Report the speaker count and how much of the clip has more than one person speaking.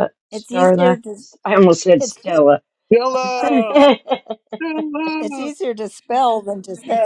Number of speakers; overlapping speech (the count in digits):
3, about 17%